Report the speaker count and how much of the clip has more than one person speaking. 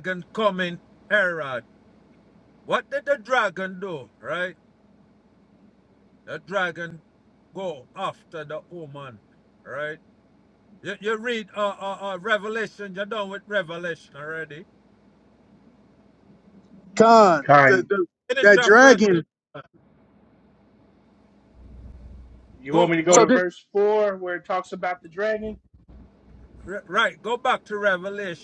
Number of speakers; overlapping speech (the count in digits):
3, about 7%